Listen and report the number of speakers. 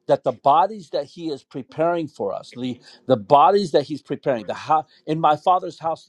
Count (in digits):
1